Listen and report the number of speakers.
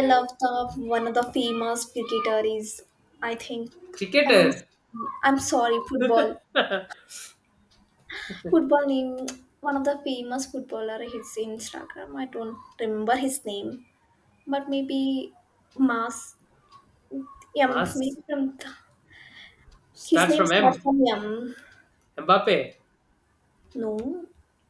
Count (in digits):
2